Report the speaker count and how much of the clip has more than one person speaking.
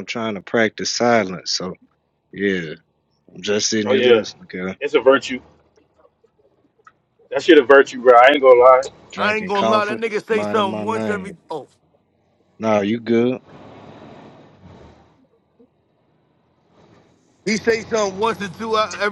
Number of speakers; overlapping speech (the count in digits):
3, about 12%